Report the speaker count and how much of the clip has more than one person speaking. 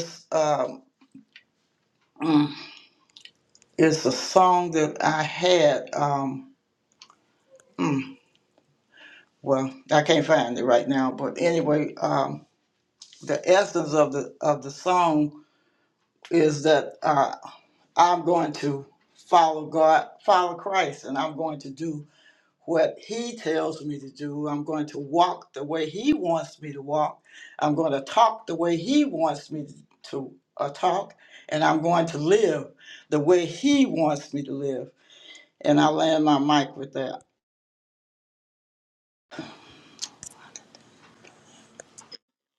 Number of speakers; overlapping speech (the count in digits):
1, no overlap